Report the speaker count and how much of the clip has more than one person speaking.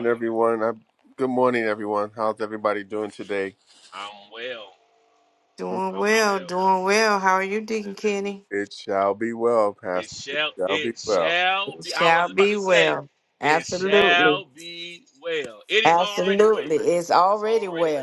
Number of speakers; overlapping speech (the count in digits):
3, about 35%